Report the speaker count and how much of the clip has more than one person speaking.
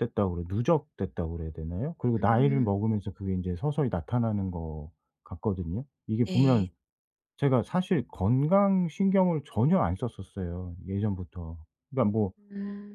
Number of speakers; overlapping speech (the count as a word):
two, about 7%